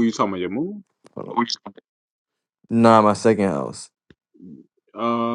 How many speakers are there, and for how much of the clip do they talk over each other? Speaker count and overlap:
2, no overlap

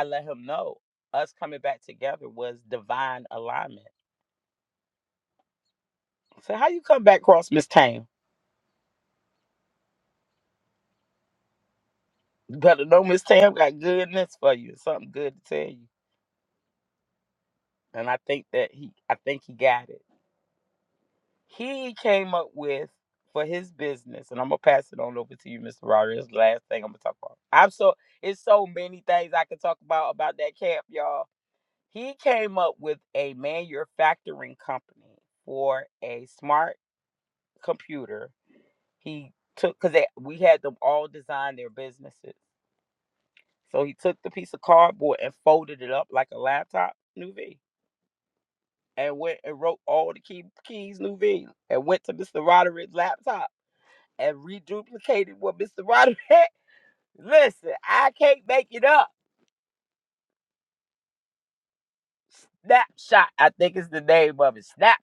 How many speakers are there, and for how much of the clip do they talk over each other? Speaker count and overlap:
1, no overlap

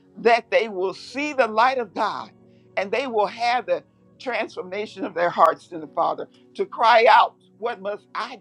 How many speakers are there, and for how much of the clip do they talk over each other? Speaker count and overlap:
1, no overlap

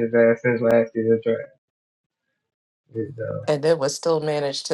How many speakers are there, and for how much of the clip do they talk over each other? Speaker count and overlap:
2, no overlap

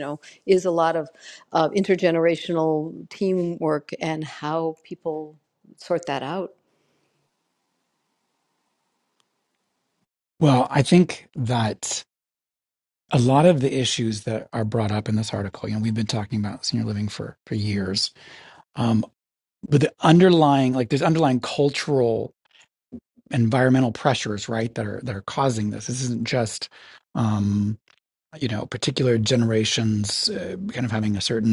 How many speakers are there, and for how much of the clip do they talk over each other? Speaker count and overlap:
2, no overlap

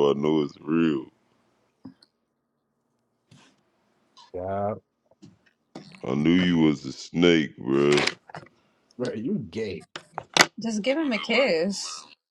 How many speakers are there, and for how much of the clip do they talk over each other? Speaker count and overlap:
3, no overlap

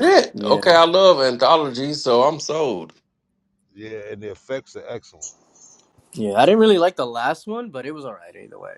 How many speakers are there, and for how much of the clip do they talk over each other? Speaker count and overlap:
3, about 6%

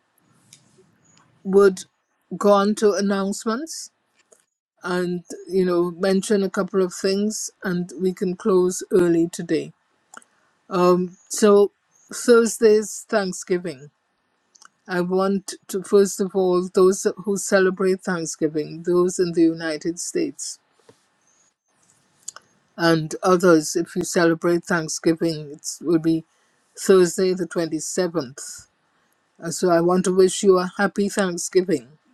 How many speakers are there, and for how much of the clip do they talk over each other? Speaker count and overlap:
1, no overlap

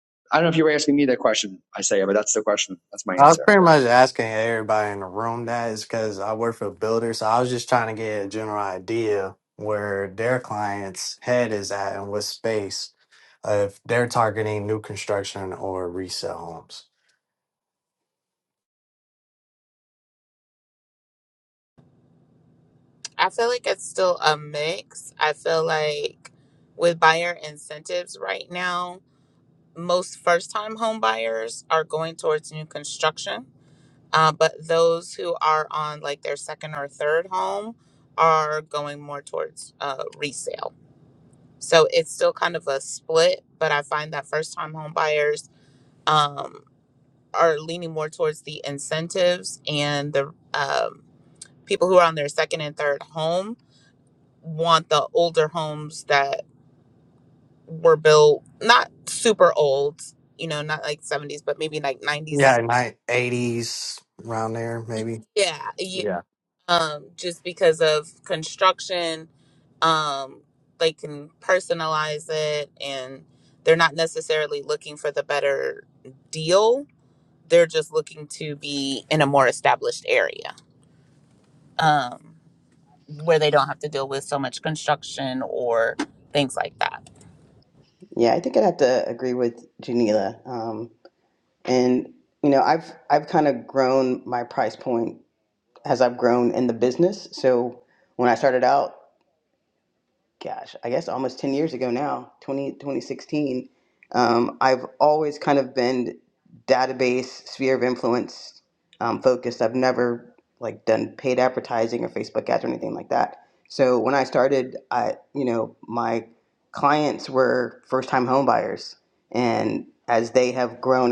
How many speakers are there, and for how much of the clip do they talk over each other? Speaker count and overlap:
4, under 1%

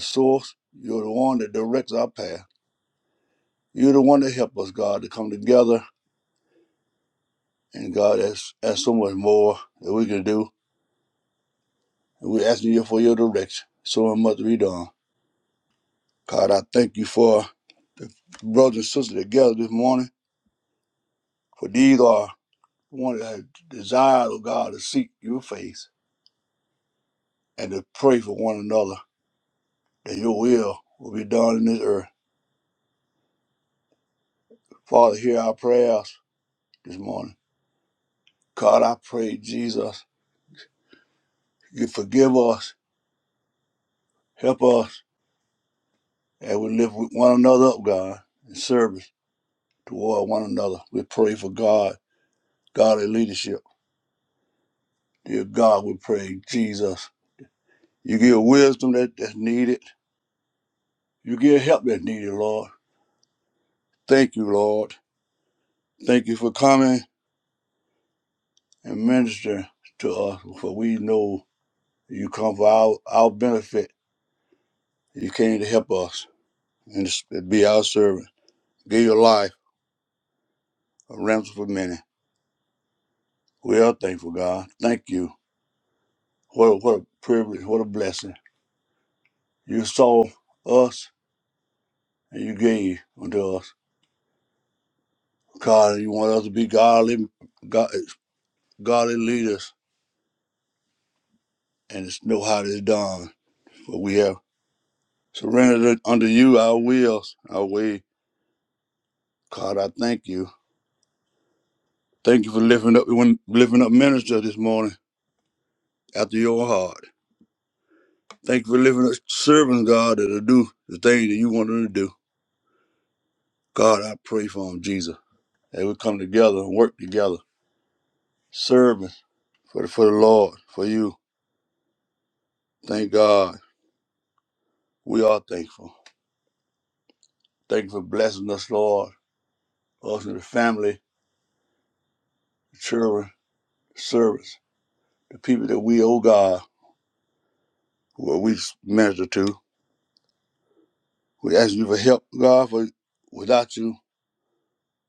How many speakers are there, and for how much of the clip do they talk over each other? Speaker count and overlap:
1, no overlap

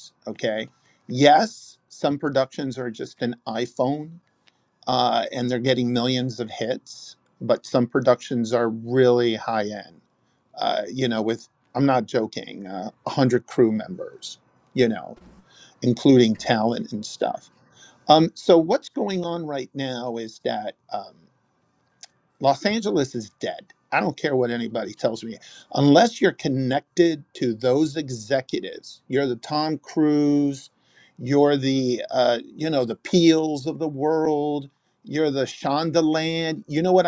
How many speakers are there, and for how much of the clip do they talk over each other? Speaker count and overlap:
1, no overlap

